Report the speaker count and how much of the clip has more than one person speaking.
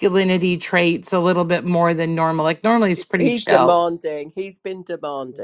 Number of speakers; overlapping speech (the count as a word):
two, about 11%